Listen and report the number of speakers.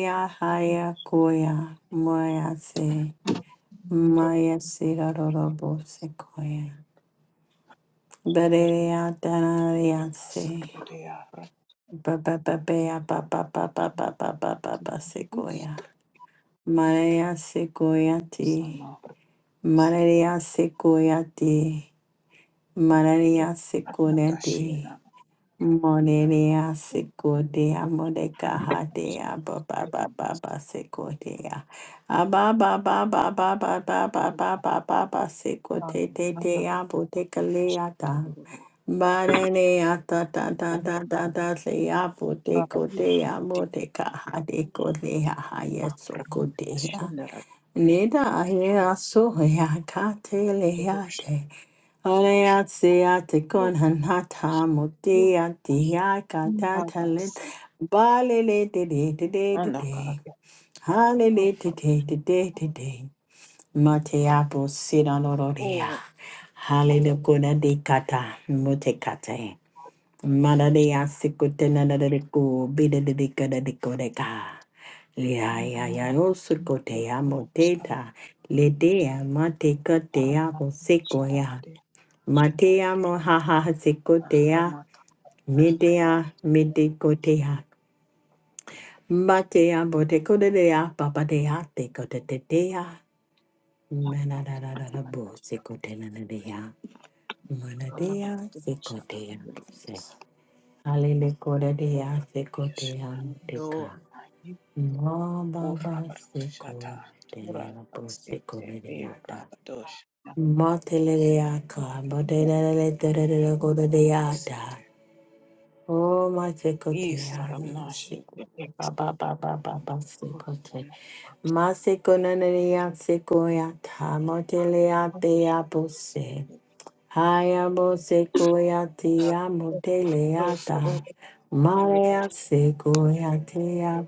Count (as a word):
two